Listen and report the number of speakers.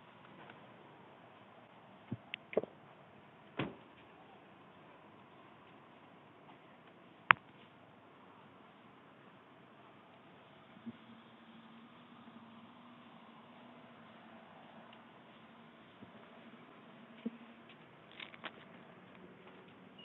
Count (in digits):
0